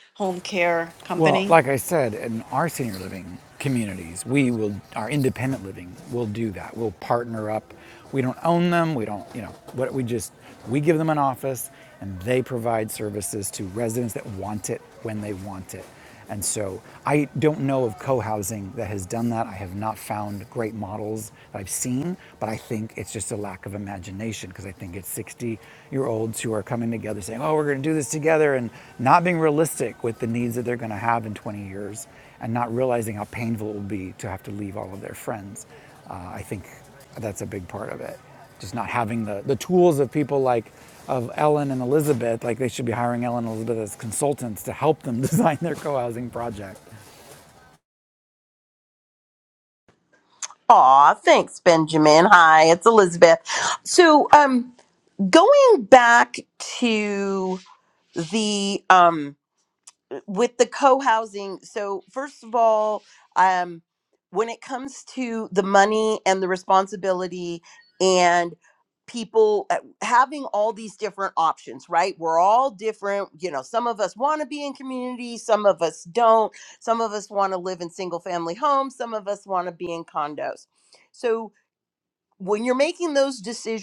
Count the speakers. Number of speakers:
three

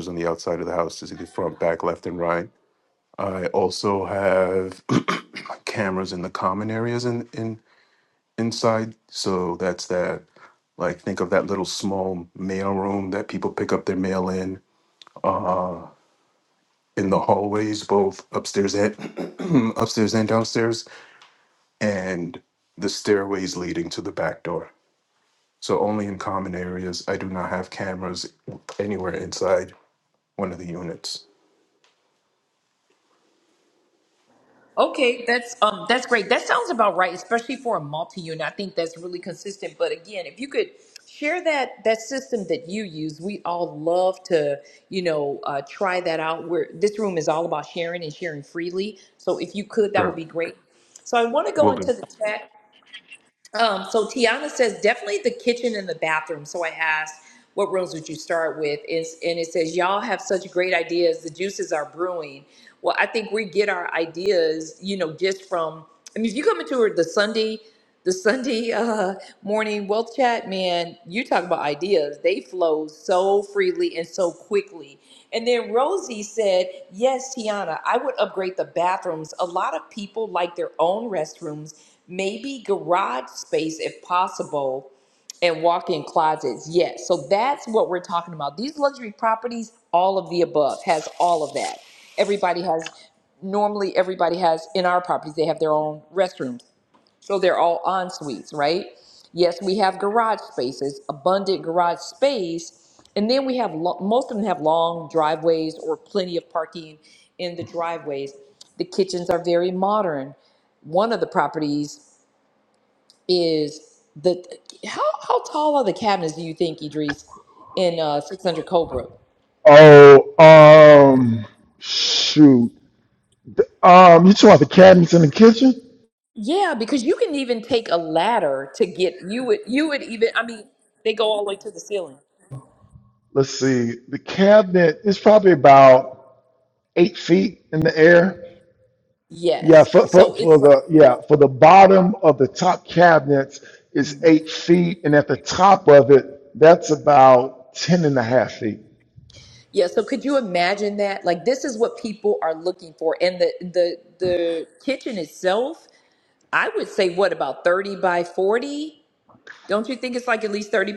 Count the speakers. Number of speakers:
three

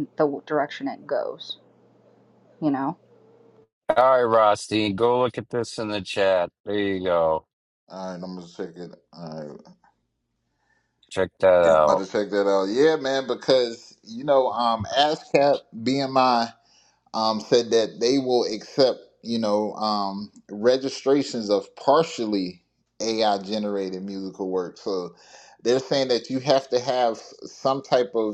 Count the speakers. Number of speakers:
three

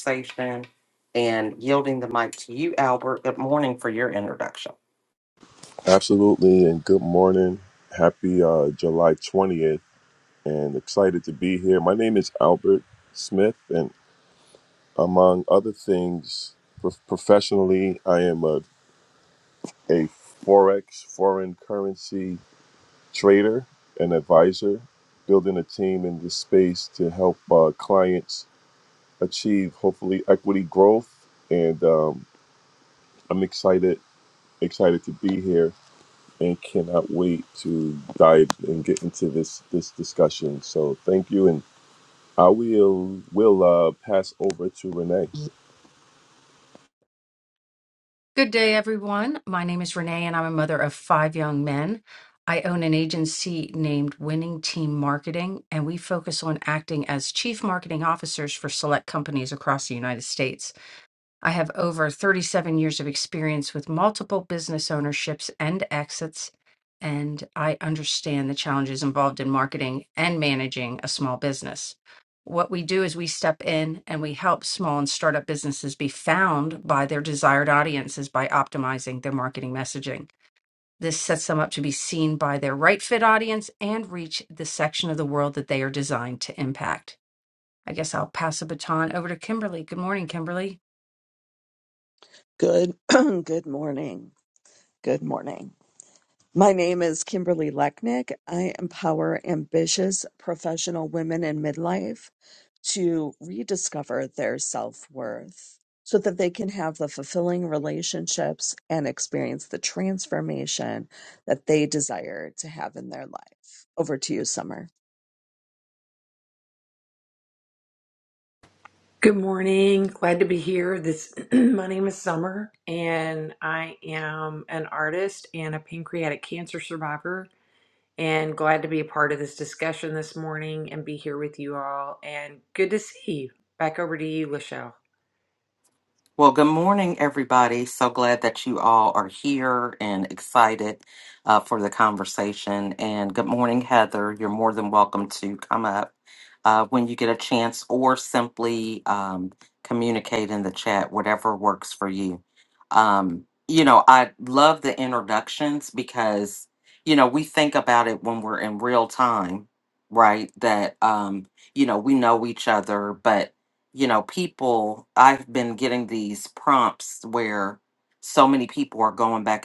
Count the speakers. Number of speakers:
five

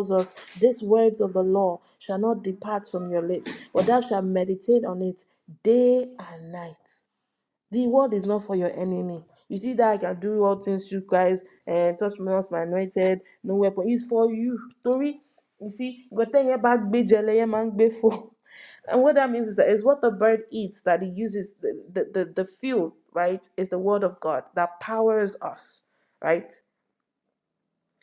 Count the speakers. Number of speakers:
one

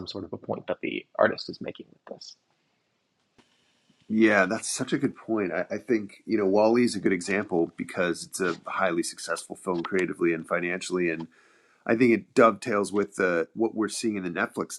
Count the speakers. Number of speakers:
two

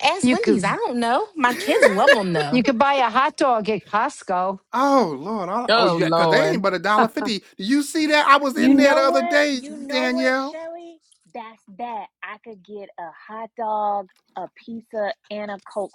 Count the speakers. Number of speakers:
four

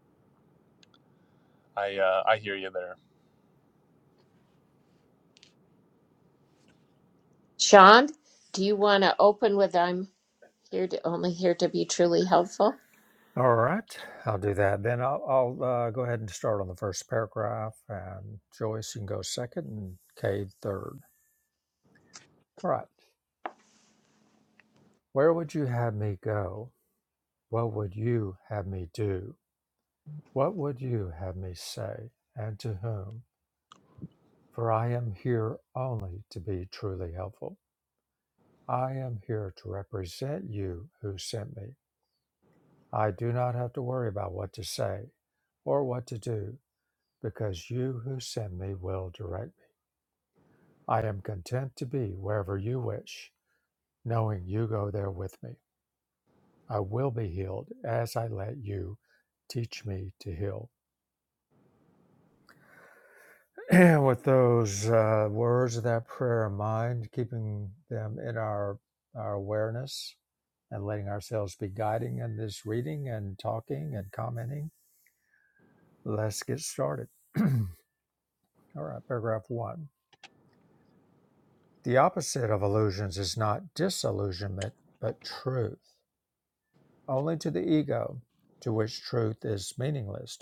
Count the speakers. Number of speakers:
three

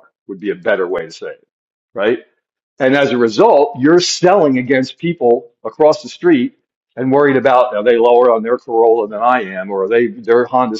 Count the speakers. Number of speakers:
one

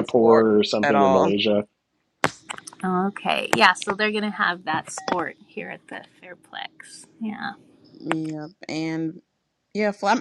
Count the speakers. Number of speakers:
three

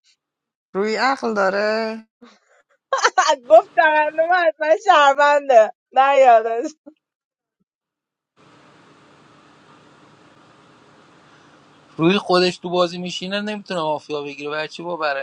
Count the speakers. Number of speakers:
three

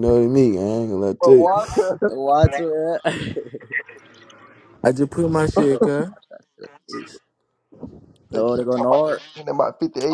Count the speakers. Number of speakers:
four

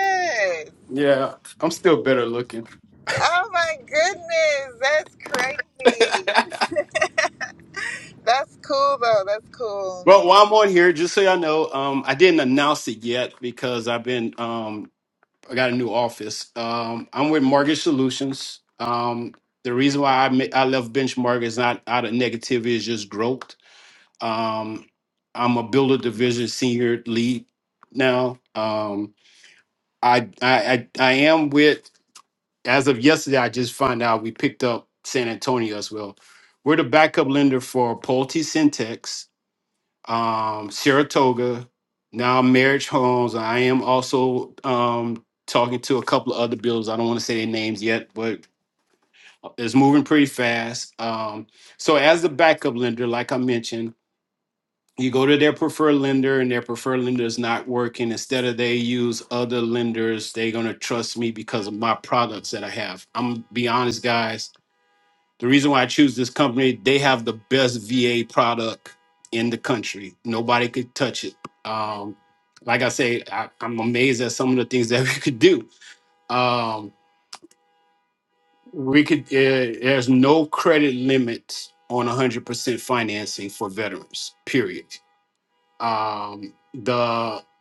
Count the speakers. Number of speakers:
two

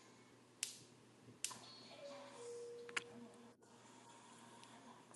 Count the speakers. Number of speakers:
zero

